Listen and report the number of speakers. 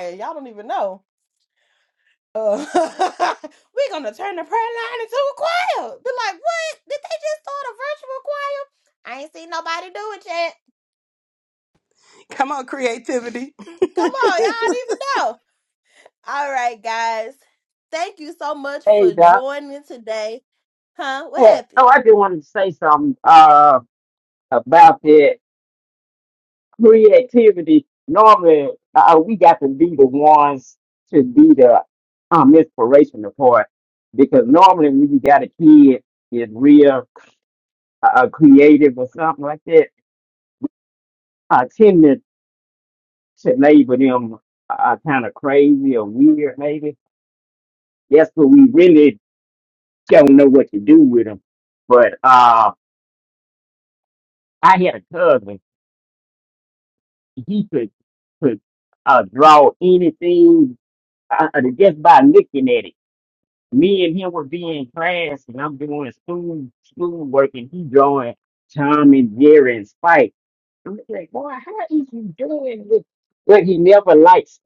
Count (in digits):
3